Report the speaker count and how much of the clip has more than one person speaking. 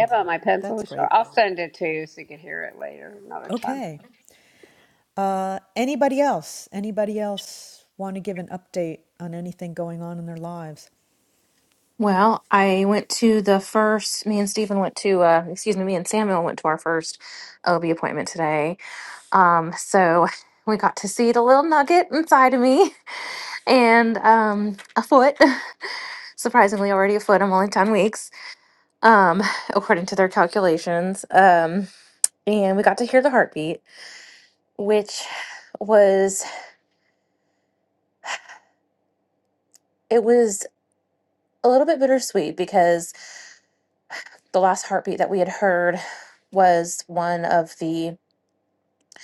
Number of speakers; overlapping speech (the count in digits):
3, about 2%